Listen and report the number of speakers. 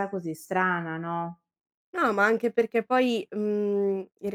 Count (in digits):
2